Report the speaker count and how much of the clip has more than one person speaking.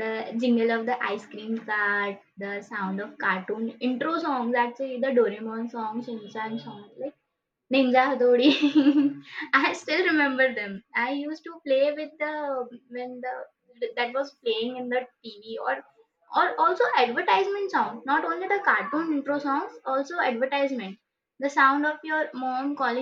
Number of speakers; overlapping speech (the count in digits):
1, no overlap